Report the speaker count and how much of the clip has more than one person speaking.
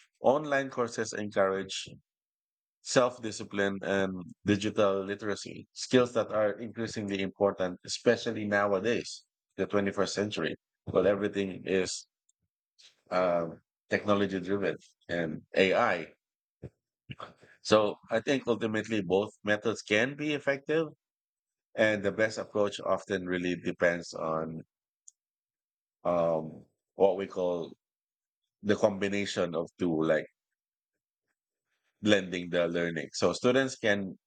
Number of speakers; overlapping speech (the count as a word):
one, no overlap